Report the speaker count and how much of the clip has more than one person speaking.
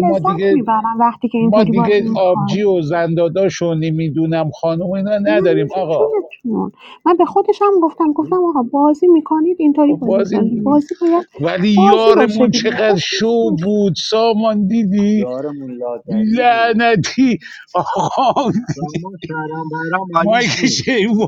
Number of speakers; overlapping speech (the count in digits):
4, about 32%